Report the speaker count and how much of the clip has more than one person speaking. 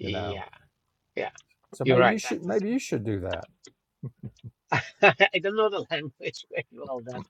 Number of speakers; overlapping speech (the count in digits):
2, about 17%